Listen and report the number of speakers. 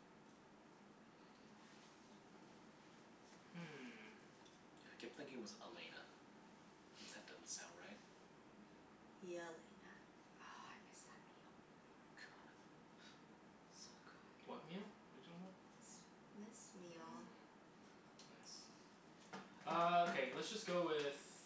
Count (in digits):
3